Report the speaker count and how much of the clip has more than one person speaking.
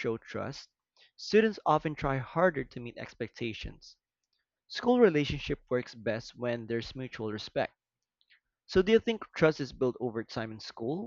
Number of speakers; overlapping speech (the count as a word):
one, no overlap